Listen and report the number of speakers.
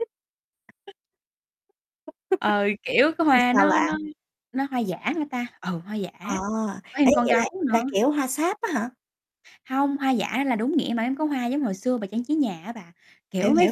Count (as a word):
two